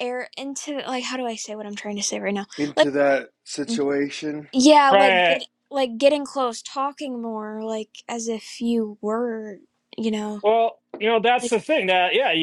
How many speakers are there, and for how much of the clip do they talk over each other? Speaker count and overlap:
3, about 7%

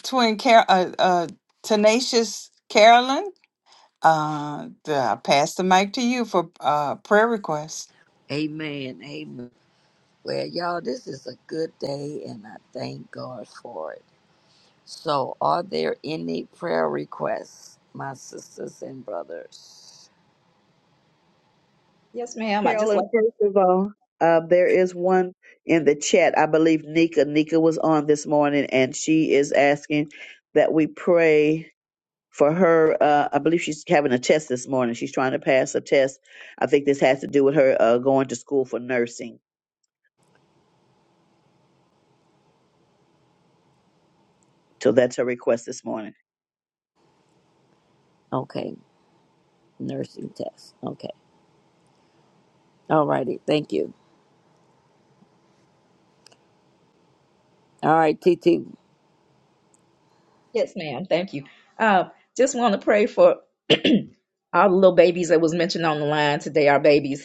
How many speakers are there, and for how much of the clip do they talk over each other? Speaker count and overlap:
4, about 1%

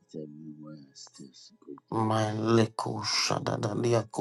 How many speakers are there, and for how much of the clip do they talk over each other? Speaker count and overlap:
2, about 10%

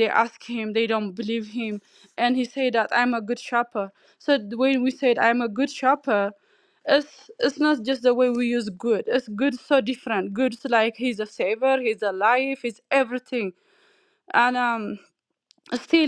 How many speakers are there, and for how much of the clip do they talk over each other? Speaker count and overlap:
1, no overlap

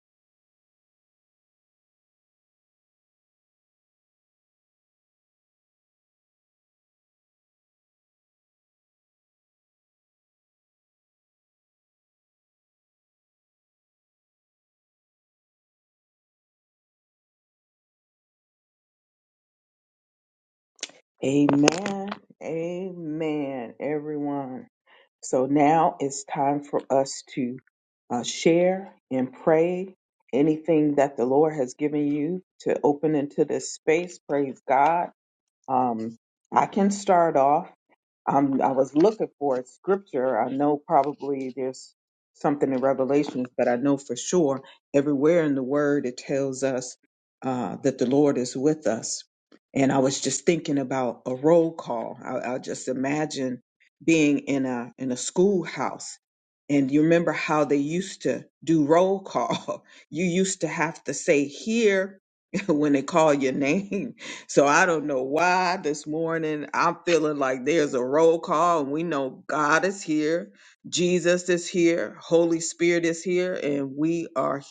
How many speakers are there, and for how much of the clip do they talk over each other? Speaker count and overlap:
1, no overlap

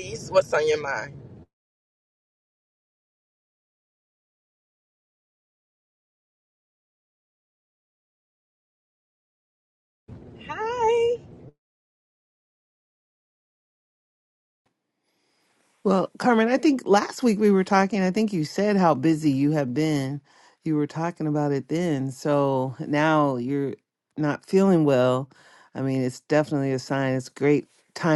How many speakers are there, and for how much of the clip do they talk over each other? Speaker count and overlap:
2, no overlap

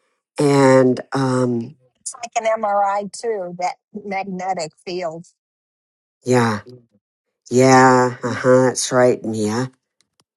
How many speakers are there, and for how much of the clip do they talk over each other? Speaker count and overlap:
2, no overlap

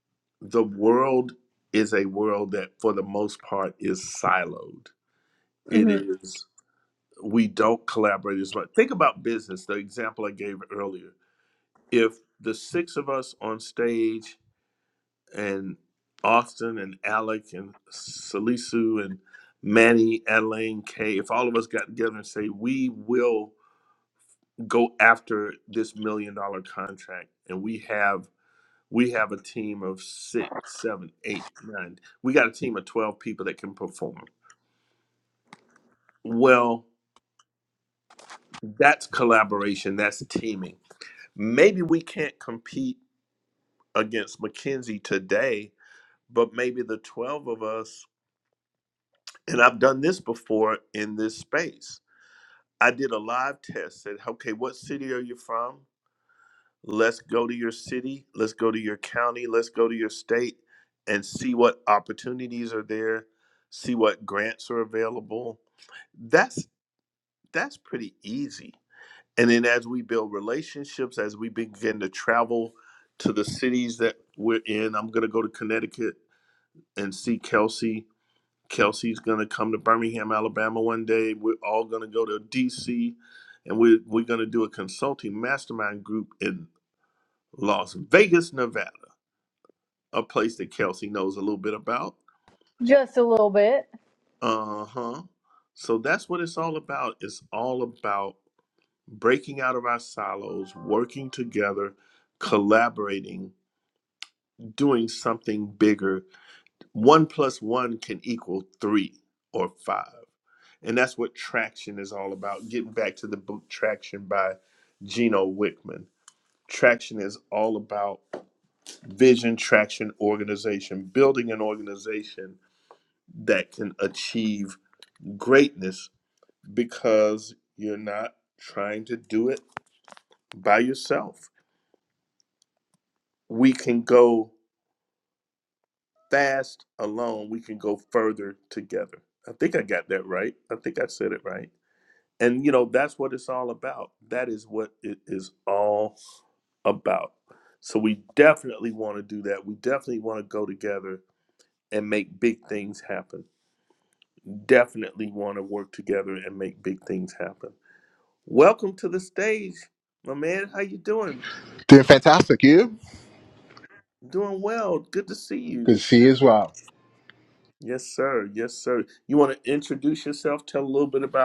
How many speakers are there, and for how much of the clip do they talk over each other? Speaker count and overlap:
3, under 1%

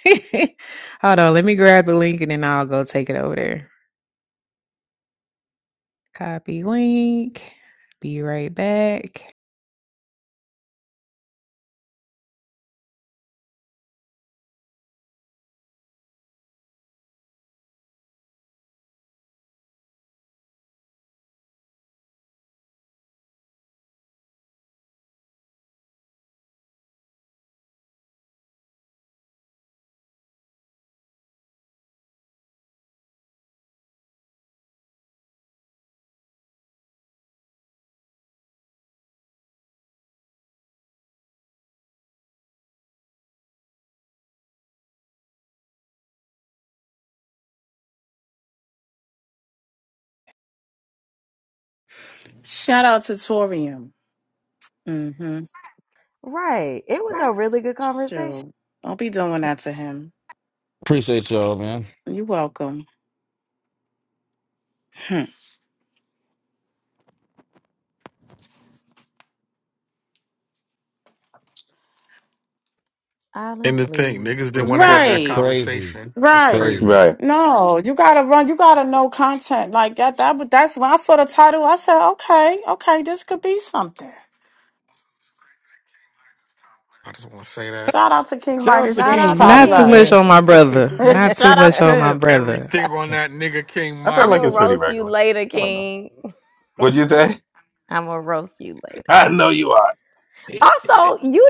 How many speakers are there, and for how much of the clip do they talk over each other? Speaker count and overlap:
6, about 8%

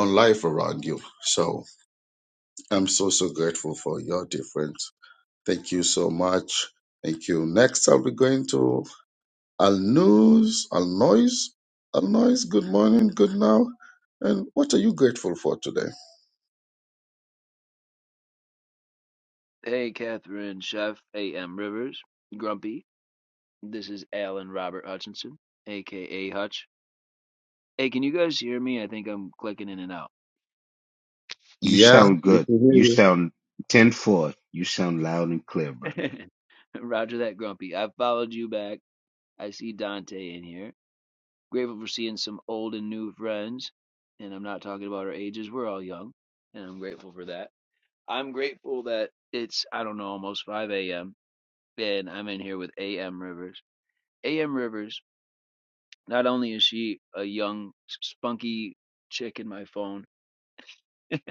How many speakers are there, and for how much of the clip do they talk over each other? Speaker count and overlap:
3, about 2%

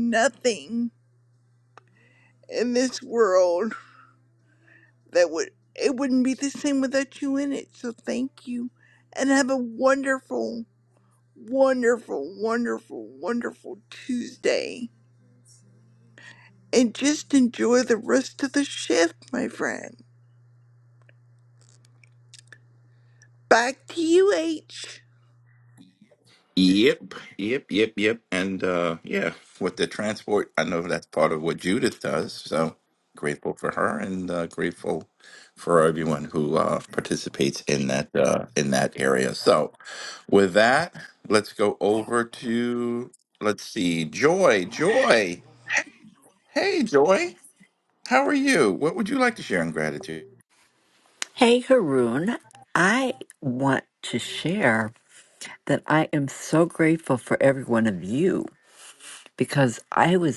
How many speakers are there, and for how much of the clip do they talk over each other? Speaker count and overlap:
3, no overlap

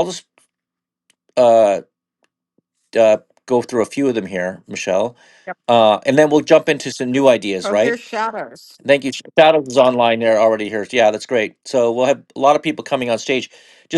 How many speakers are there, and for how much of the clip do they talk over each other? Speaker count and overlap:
2, about 2%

